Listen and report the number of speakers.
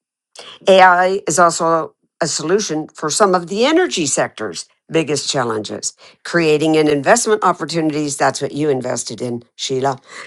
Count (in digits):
1